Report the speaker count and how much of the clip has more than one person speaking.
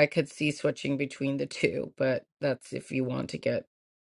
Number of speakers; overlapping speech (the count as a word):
one, no overlap